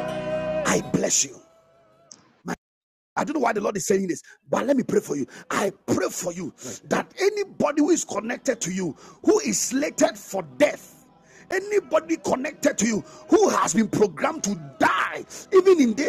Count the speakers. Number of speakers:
1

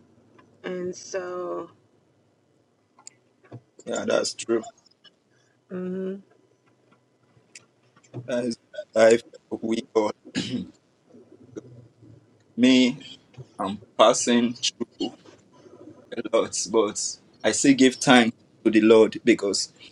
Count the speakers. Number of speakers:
2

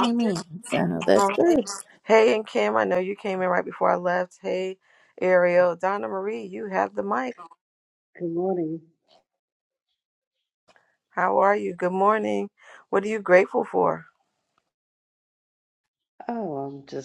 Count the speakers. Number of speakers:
3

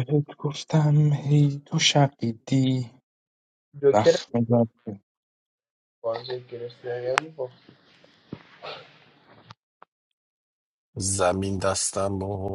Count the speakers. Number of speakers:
3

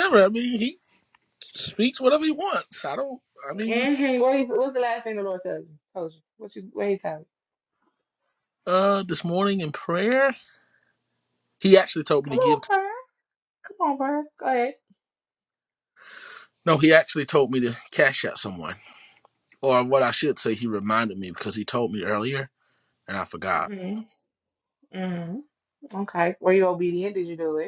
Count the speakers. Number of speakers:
2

